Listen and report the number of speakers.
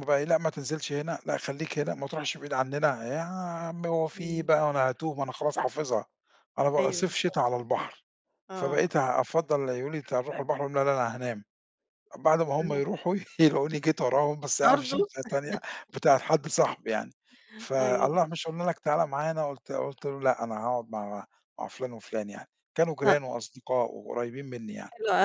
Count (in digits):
2